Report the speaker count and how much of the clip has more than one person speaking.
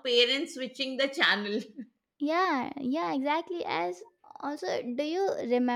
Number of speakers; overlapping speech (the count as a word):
two, no overlap